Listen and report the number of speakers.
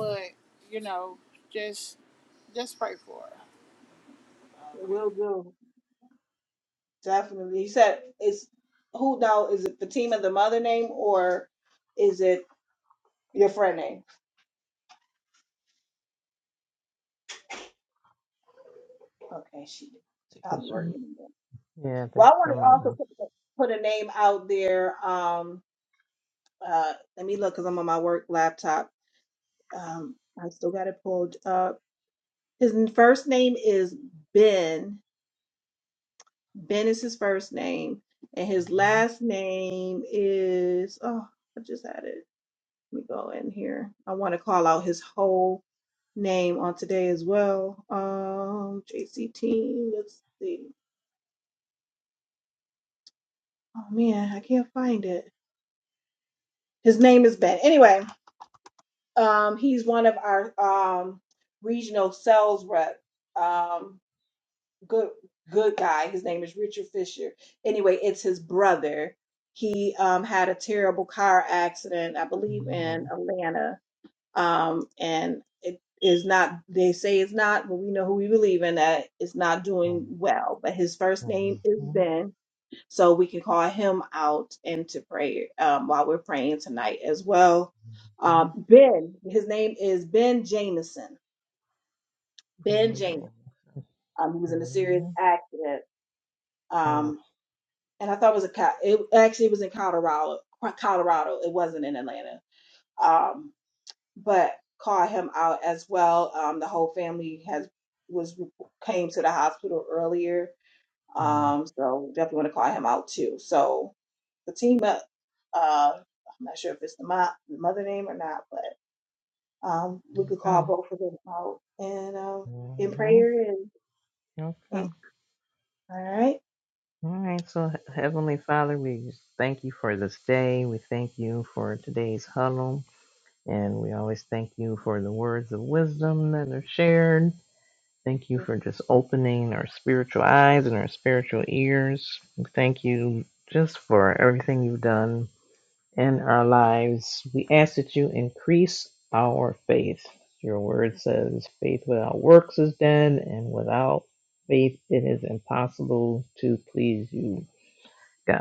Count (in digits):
3